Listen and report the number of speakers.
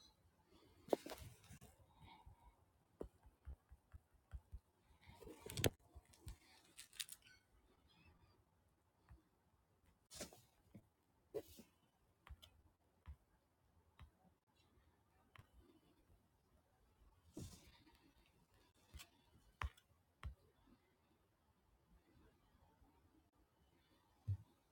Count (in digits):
0